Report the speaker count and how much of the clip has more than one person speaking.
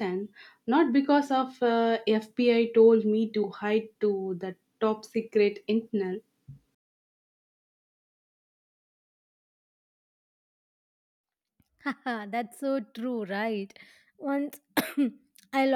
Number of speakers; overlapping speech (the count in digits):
2, no overlap